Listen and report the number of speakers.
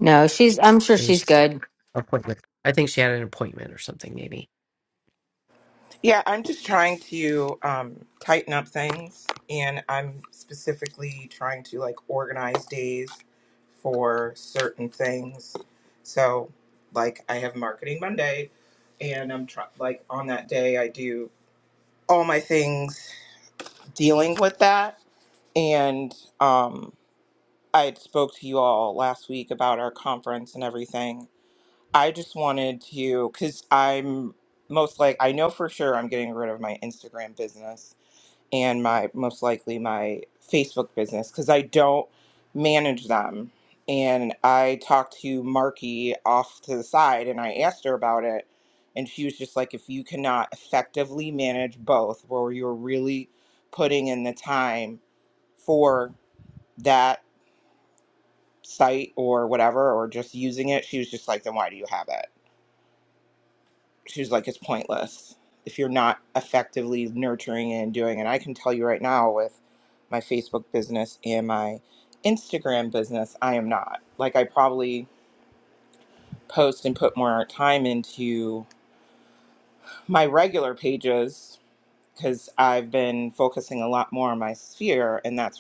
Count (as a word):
three